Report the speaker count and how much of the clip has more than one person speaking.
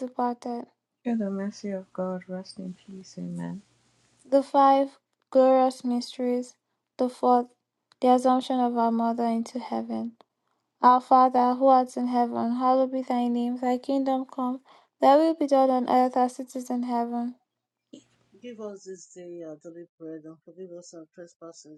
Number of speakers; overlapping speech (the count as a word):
three, no overlap